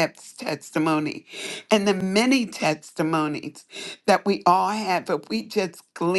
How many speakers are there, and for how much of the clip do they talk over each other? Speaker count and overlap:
1, no overlap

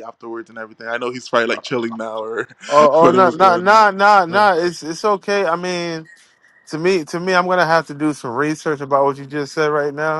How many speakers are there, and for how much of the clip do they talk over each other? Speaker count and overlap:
2, about 9%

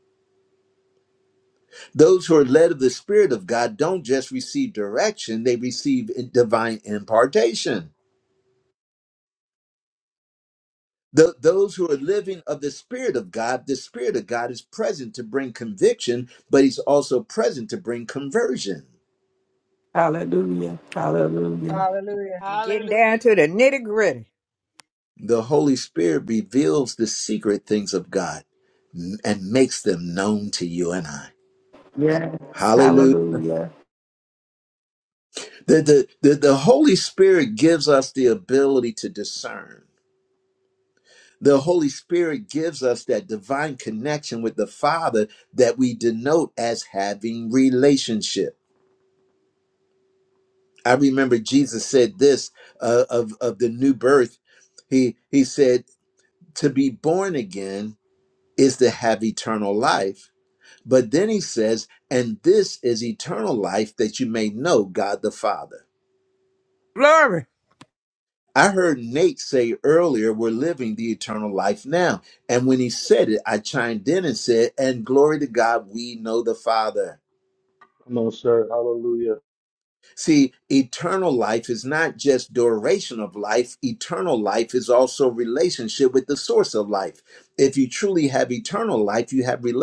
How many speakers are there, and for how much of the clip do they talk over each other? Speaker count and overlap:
5, about 1%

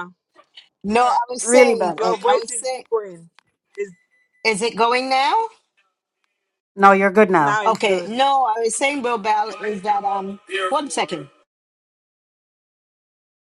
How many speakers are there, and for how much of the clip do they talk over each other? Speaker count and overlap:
3, about 15%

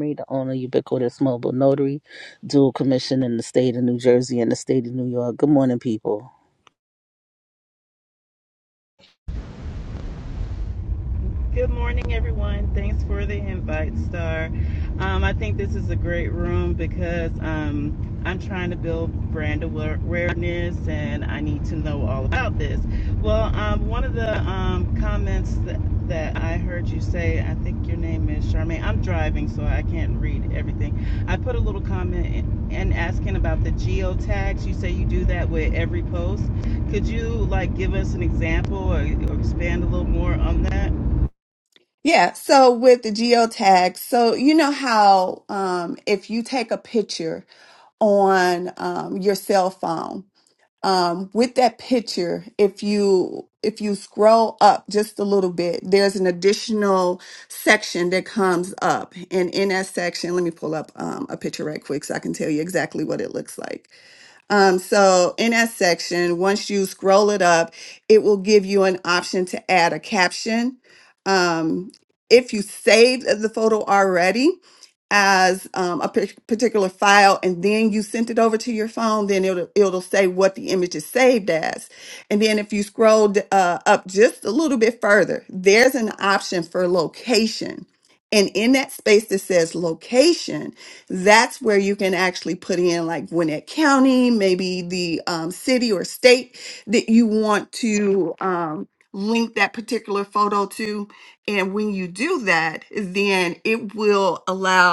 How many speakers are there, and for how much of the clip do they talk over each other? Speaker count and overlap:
3, no overlap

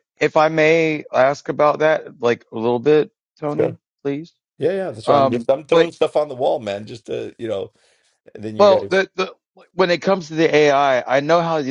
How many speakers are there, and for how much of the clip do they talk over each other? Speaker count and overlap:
2, about 11%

